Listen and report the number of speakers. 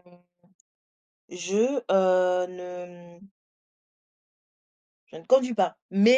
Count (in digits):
1